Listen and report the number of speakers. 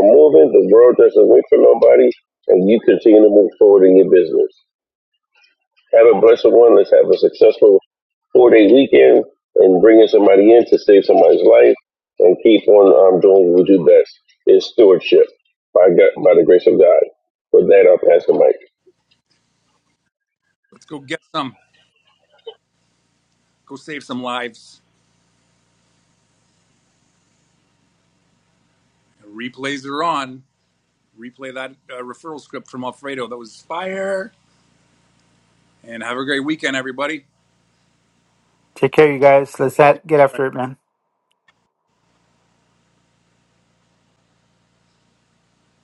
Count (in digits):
3